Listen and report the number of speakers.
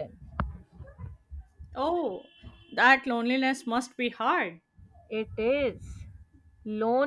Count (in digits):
2